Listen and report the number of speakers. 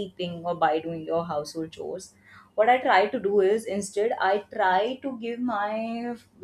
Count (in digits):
1